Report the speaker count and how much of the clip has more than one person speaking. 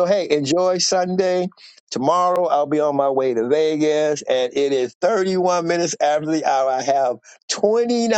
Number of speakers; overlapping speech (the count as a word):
one, no overlap